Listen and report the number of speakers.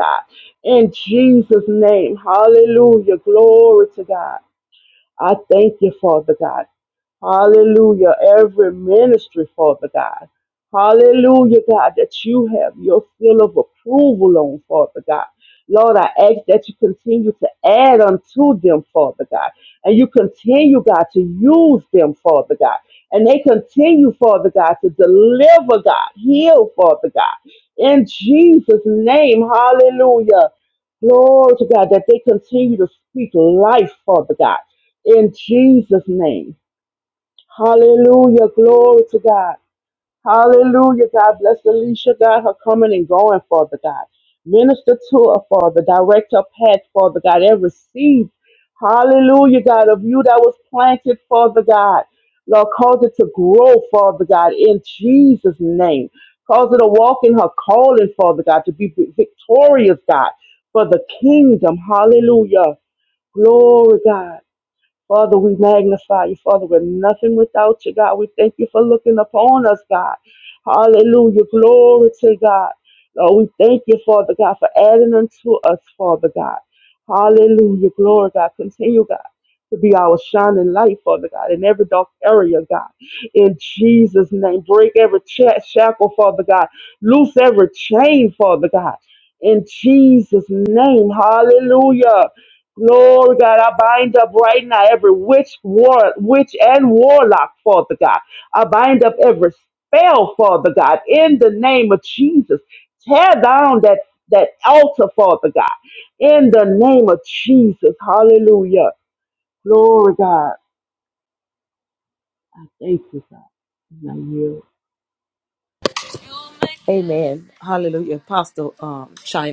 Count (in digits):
2